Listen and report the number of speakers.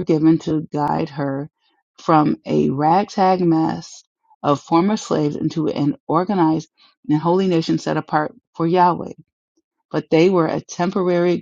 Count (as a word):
one